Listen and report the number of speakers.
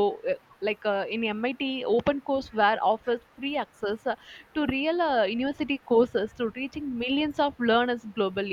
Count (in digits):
1